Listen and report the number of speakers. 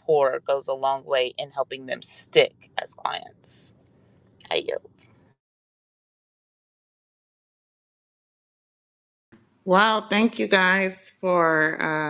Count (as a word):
two